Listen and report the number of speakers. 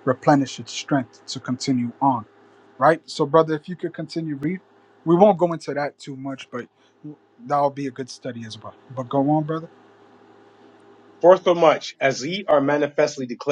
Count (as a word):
two